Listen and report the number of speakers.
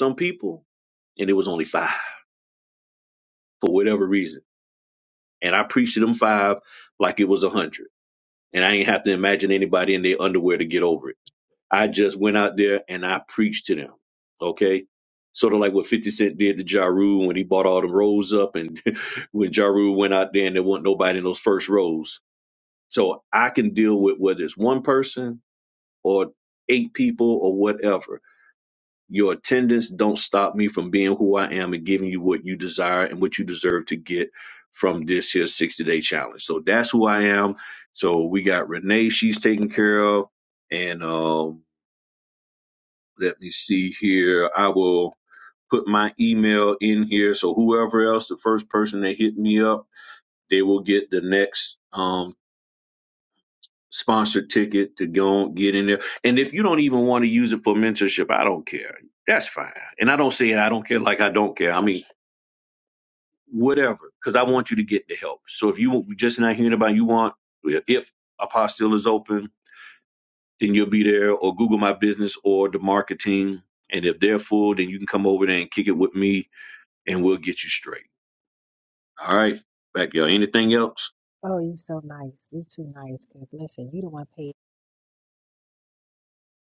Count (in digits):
2